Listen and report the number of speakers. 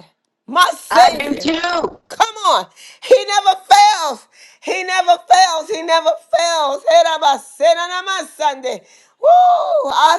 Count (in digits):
2